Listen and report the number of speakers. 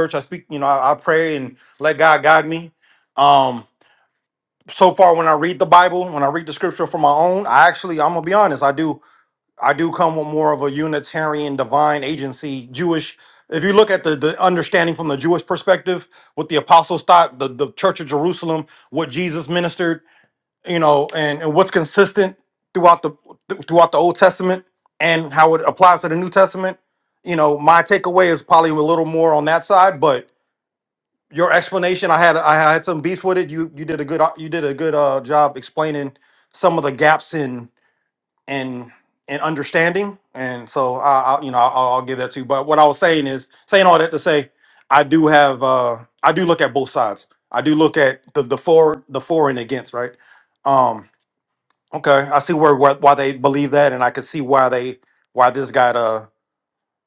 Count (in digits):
1